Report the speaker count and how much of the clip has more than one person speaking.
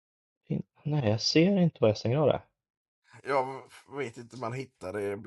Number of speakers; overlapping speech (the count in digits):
2, no overlap